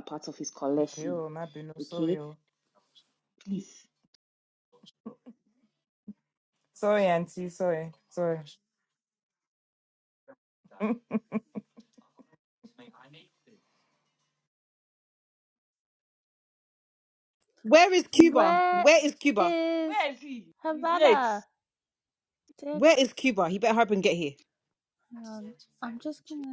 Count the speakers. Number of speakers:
four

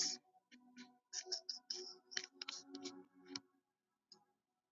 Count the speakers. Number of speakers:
zero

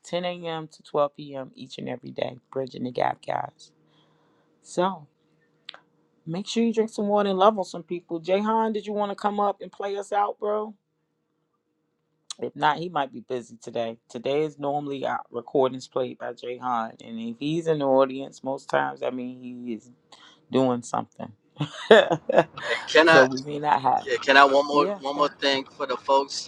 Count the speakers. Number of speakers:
two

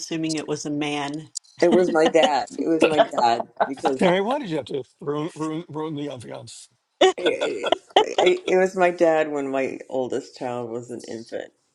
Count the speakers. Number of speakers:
three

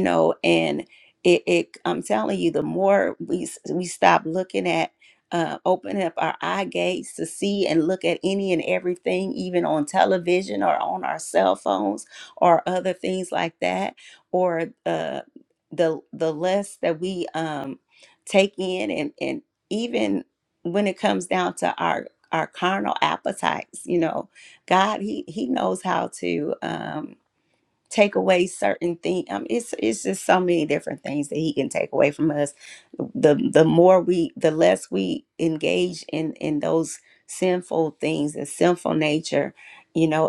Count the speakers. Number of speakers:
one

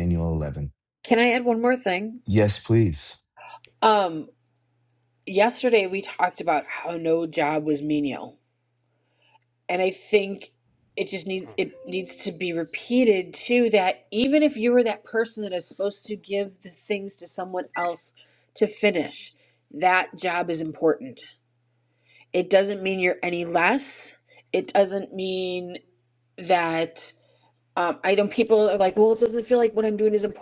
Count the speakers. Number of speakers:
two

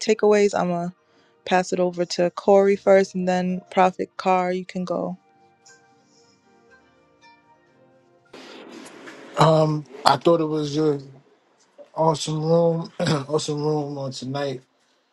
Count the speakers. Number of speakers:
two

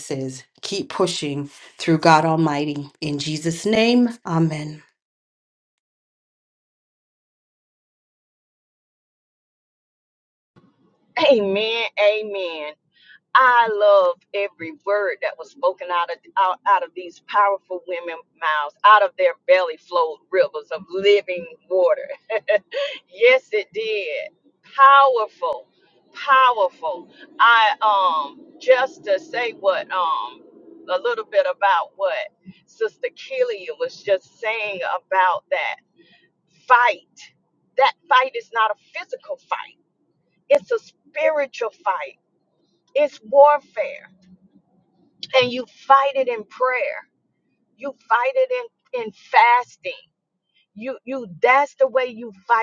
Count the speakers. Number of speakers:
two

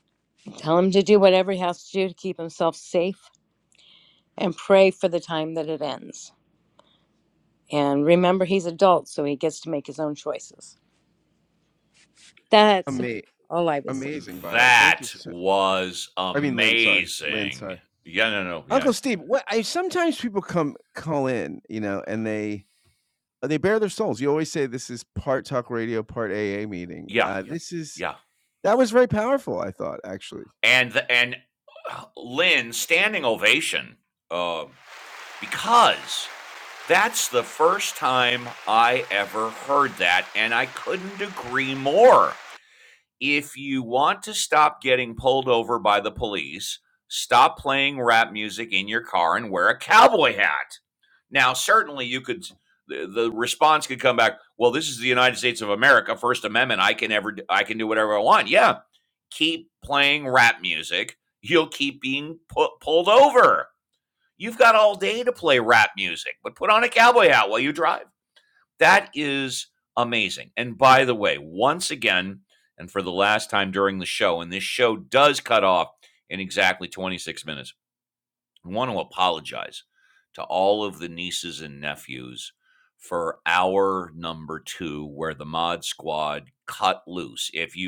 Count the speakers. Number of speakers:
three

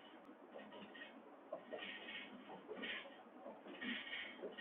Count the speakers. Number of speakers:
zero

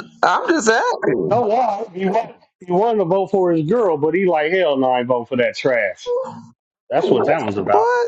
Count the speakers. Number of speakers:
two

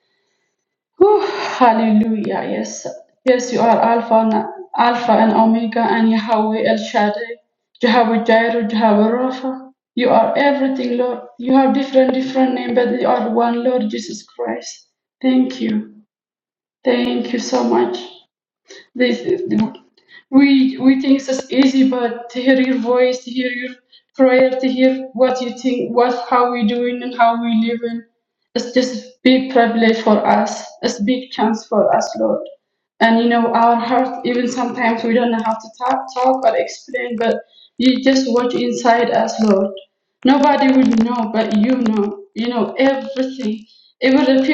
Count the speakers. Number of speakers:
one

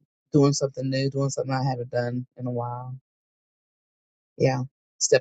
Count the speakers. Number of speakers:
one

